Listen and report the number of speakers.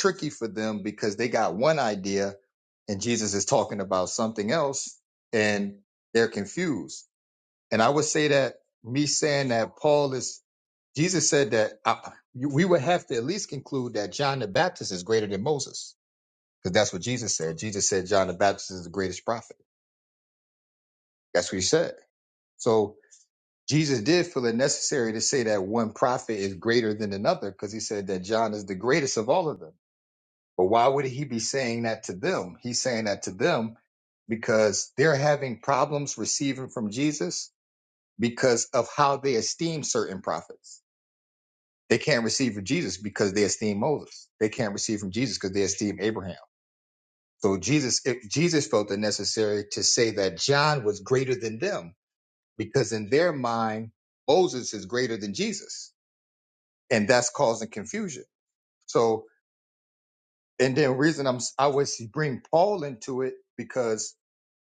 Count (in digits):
1